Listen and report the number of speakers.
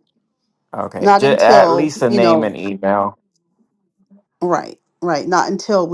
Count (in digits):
2